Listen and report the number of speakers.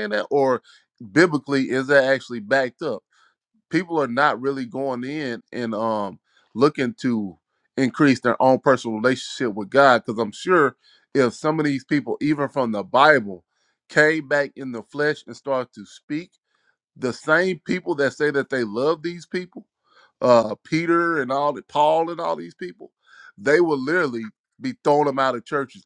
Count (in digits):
1